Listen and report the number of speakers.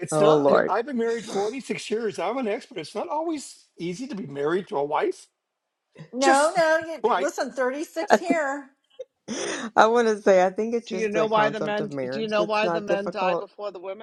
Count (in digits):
4